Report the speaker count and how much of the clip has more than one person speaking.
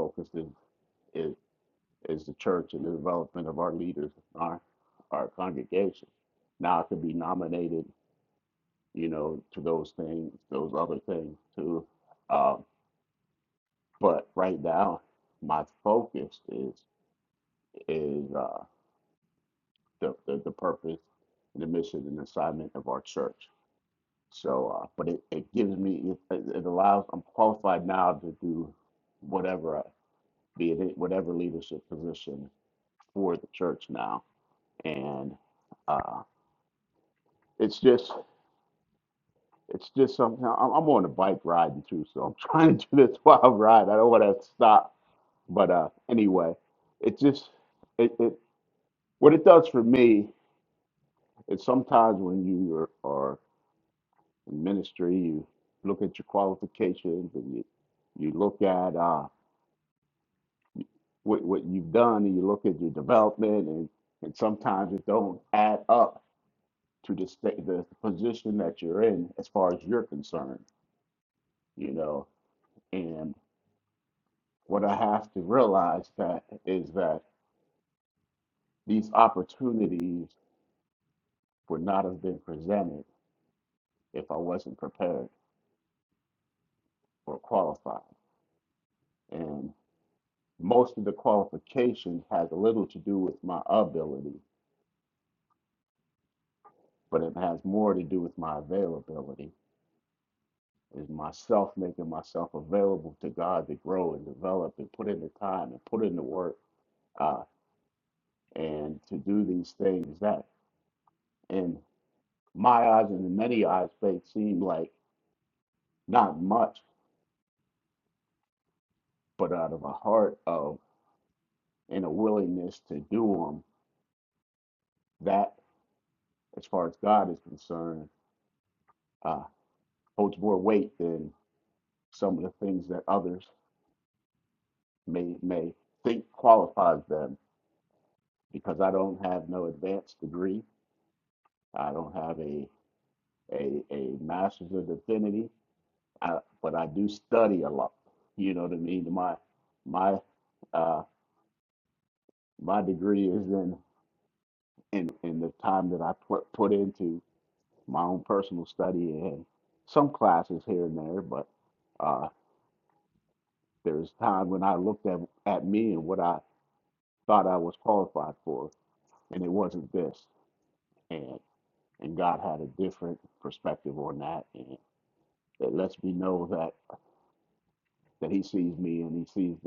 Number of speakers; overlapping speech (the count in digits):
1, no overlap